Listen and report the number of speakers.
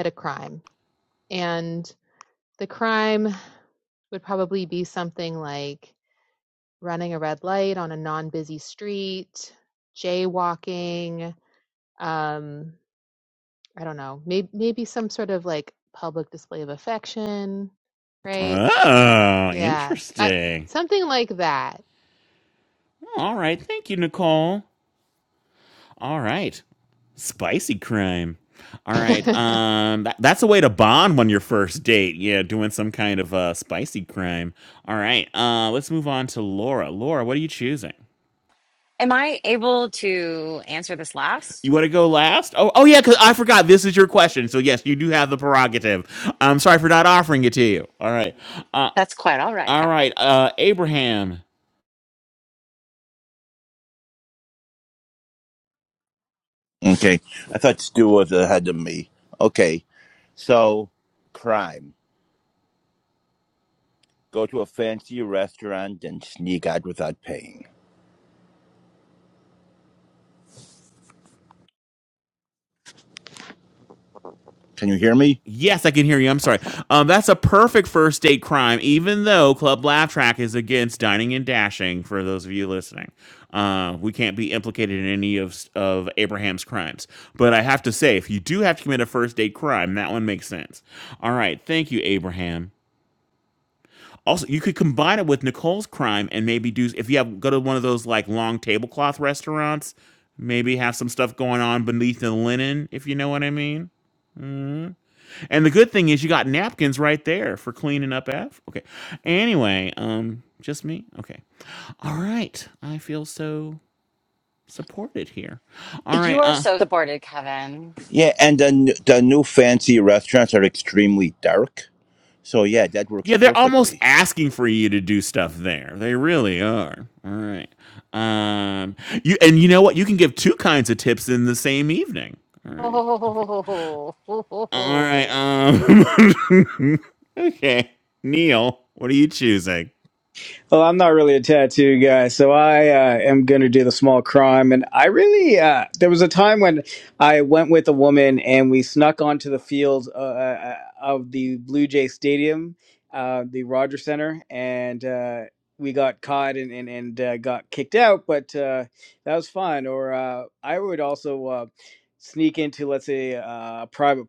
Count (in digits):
5